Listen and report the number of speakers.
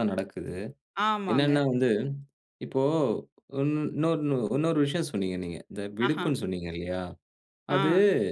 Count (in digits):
2